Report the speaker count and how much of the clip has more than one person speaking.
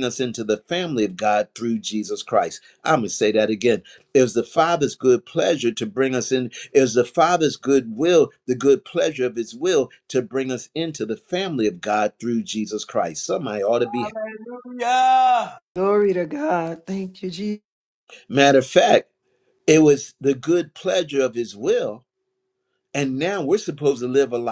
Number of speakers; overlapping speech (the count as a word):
three, about 1%